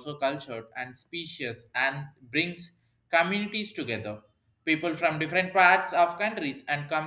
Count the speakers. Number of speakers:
one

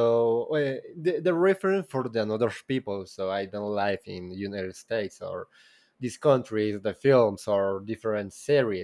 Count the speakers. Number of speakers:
one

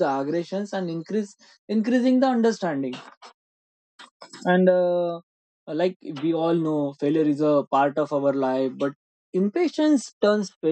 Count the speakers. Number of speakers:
one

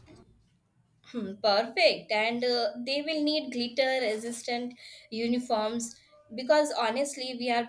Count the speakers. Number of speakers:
one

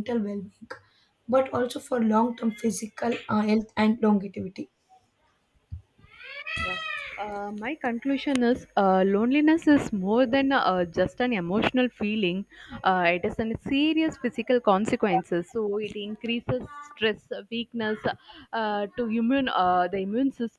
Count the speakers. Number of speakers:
two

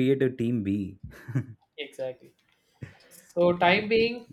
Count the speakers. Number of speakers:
two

